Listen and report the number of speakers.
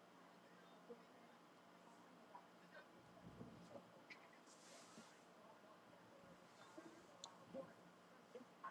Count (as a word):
zero